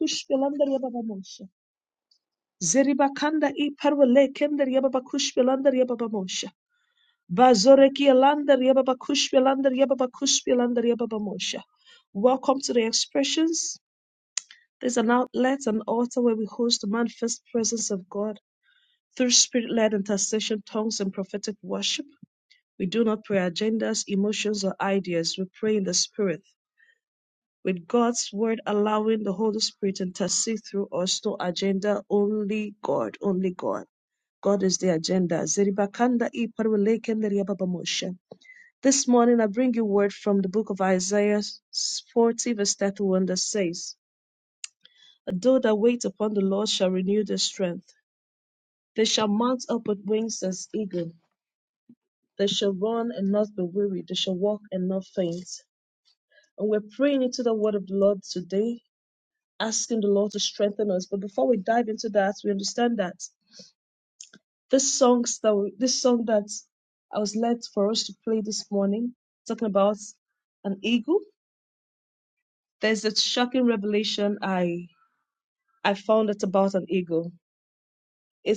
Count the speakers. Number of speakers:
1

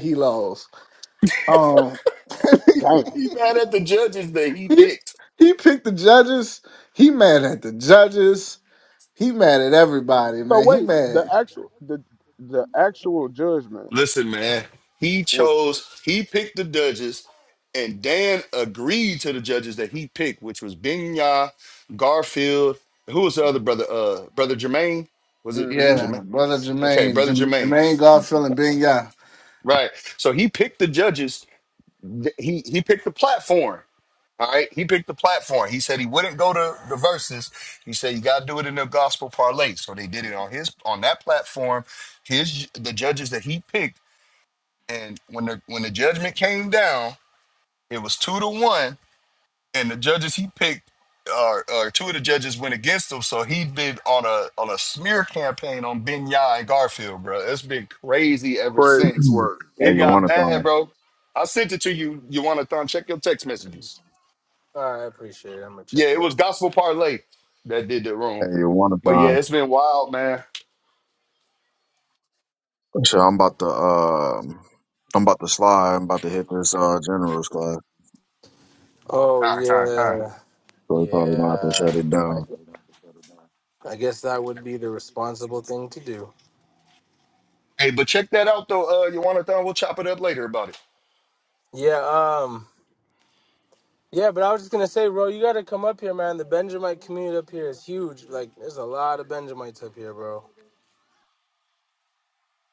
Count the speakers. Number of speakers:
5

